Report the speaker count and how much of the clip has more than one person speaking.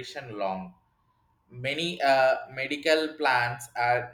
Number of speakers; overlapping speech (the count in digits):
1, no overlap